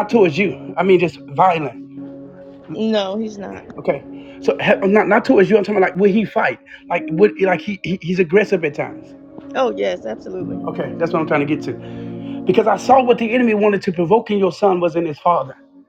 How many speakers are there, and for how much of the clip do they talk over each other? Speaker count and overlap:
2, no overlap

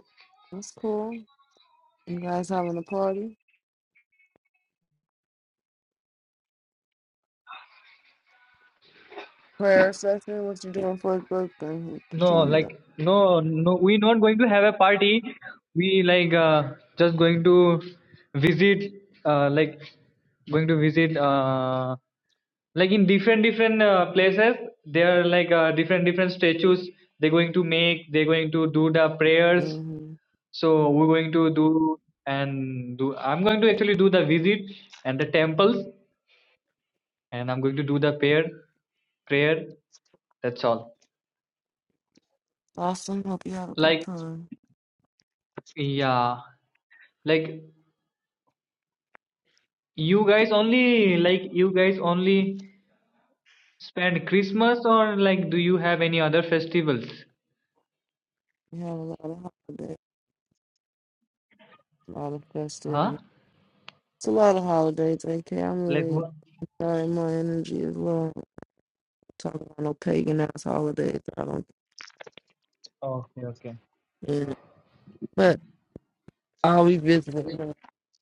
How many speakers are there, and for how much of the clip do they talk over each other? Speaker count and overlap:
2, about 2%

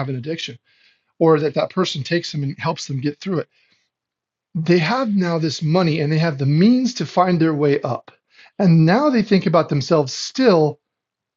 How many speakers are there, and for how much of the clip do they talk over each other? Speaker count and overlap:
1, no overlap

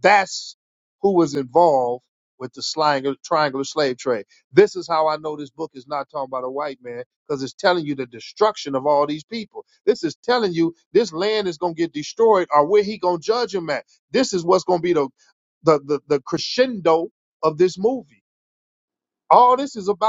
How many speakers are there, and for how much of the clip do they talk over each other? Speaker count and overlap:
1, no overlap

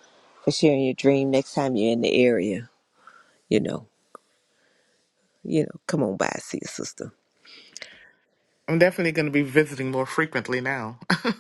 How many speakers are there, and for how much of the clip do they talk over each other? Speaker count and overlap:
2, no overlap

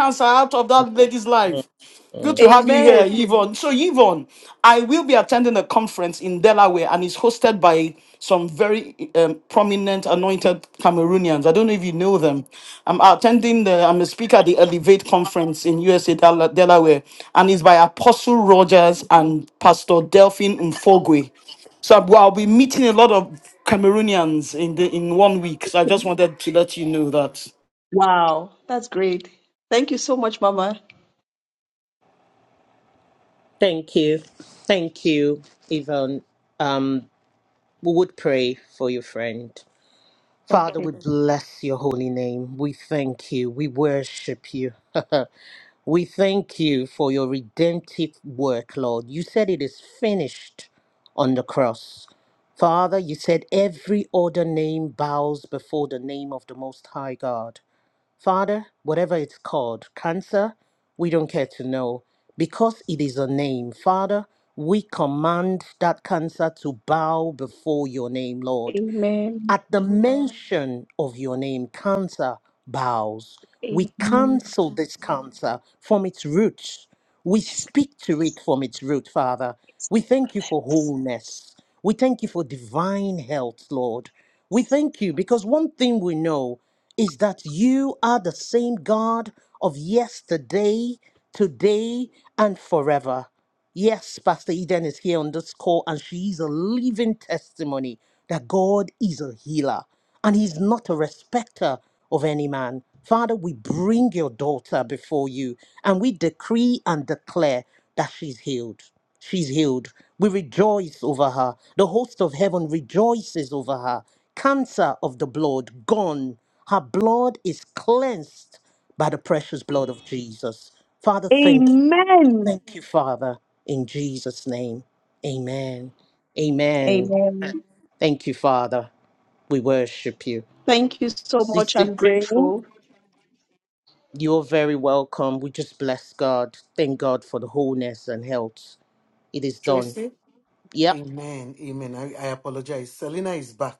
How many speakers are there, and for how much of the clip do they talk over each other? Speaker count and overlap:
4, about 3%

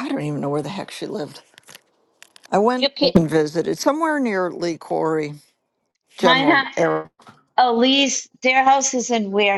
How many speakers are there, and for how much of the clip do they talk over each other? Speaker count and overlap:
2, about 9%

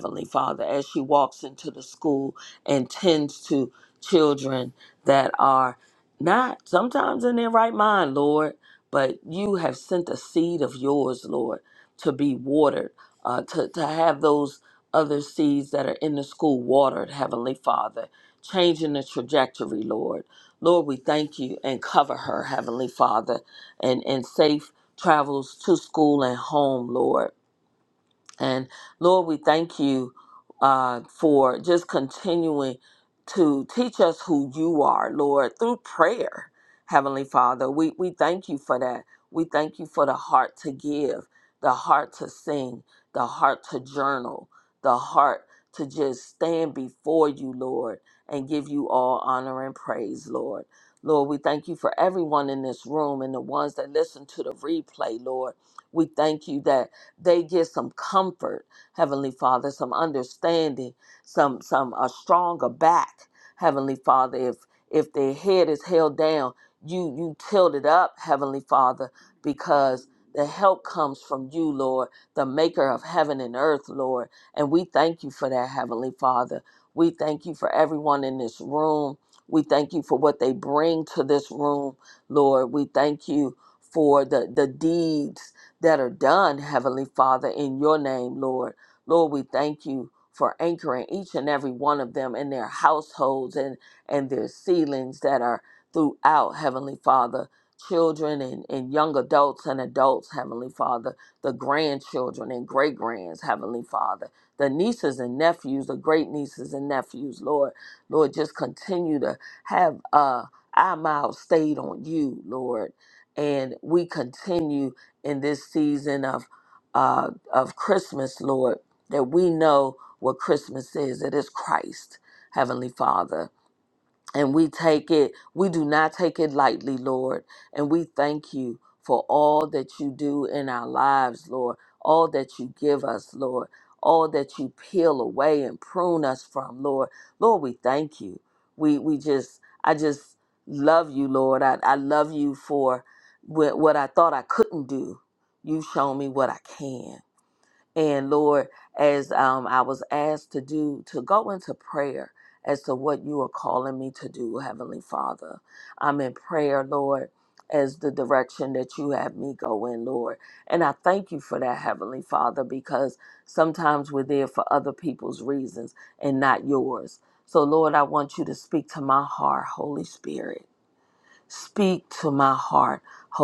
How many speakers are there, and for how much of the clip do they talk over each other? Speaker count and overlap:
1, no overlap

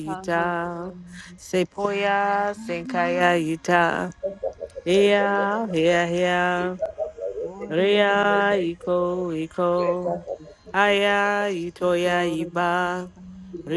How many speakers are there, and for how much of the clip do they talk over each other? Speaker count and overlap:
2, about 38%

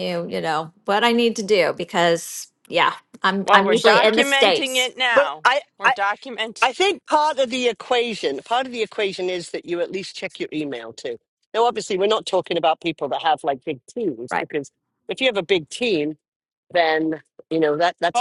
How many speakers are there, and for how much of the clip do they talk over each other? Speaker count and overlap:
3, about 10%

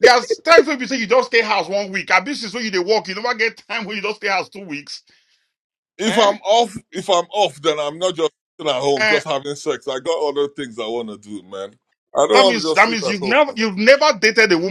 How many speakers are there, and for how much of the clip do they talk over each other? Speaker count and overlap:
2, about 12%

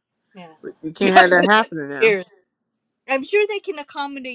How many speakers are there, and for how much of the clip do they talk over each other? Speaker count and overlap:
2, about 13%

